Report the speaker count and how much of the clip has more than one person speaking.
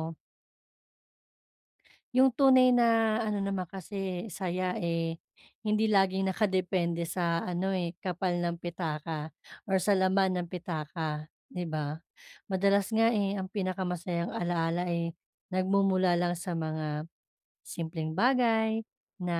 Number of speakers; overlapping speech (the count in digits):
1, no overlap